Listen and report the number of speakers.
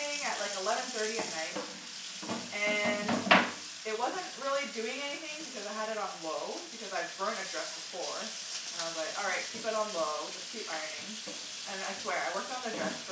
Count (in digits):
1